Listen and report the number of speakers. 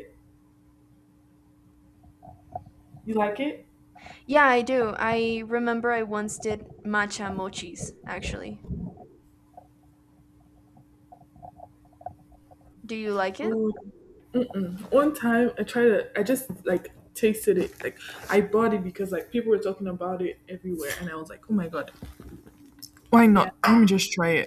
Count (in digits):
2